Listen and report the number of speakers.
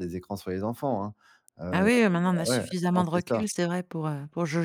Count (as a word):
two